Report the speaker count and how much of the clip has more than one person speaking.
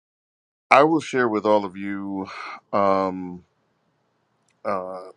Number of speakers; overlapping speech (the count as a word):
one, no overlap